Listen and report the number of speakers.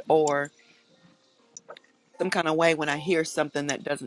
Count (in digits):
1